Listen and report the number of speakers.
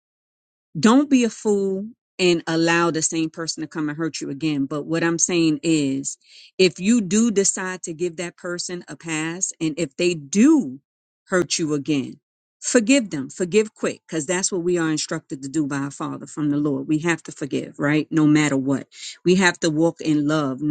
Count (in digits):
1